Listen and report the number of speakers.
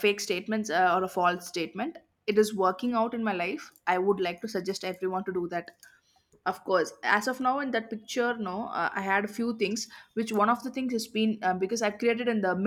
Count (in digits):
1